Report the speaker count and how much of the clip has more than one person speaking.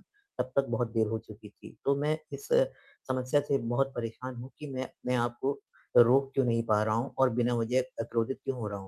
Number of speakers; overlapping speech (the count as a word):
one, no overlap